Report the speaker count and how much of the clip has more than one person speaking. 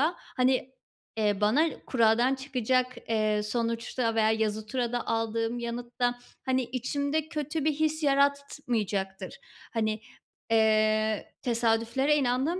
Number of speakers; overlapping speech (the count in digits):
1, no overlap